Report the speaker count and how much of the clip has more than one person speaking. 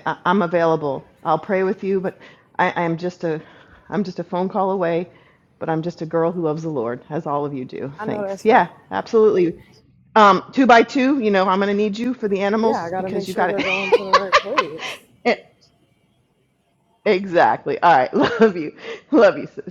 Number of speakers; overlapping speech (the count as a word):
two, about 9%